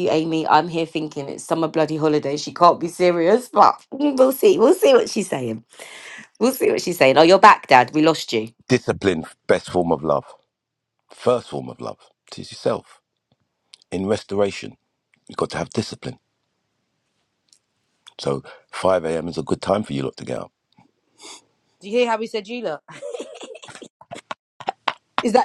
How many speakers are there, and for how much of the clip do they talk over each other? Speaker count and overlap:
3, no overlap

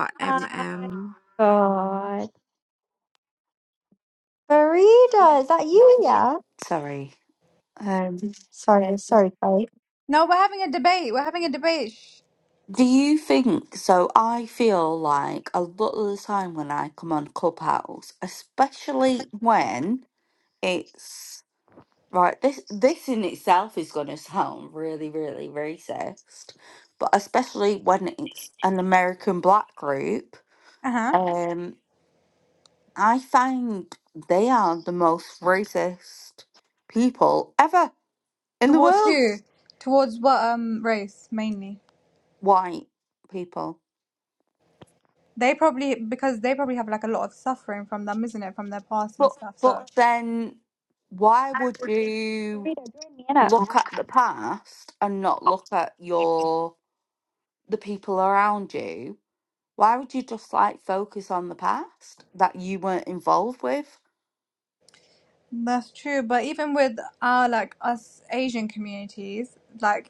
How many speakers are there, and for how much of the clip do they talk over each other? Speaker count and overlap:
4, about 3%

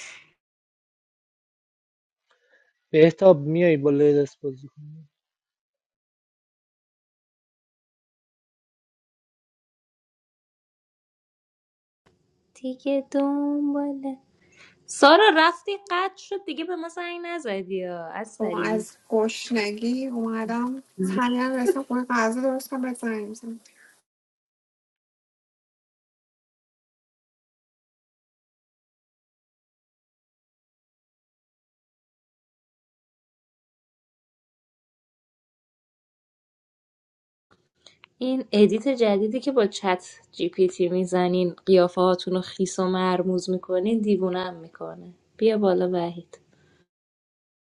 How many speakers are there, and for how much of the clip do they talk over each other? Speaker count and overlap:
3, about 1%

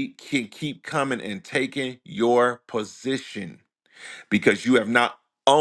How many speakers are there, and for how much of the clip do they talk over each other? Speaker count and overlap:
1, no overlap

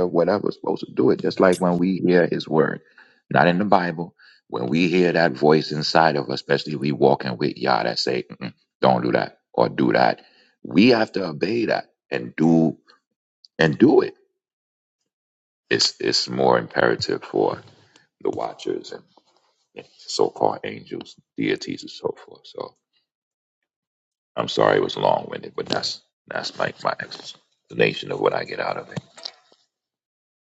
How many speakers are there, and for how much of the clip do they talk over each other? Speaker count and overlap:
1, no overlap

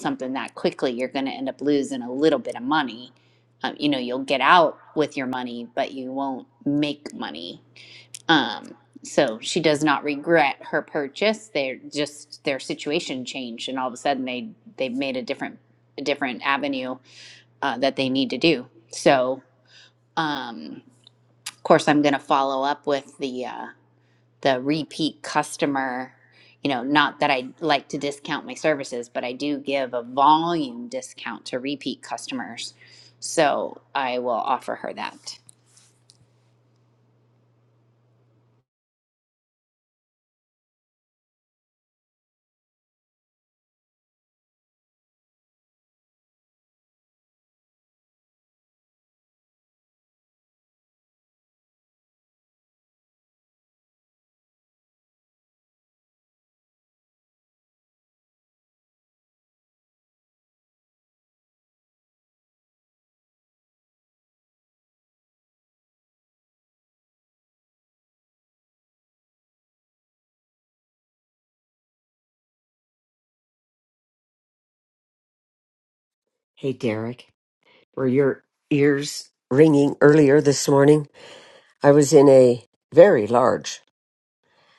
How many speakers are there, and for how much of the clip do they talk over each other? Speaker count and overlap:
2, no overlap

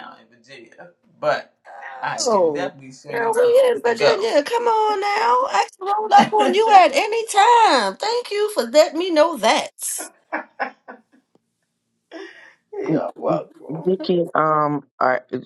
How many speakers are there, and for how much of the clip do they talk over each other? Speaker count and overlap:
3, about 12%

